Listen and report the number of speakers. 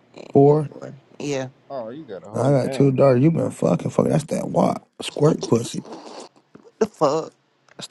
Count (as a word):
three